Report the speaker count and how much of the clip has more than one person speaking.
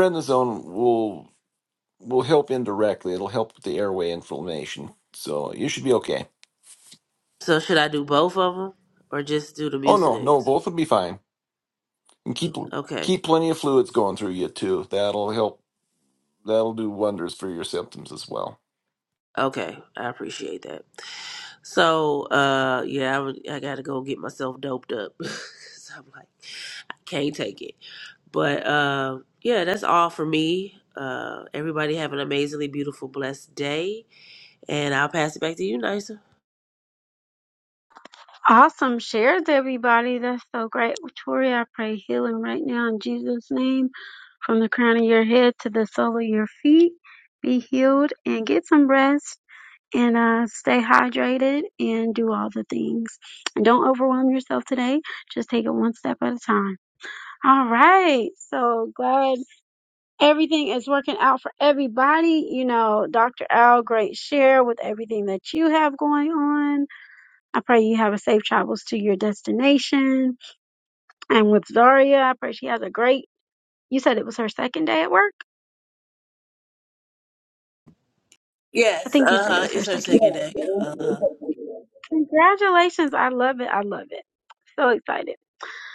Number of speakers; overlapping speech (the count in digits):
3, about 2%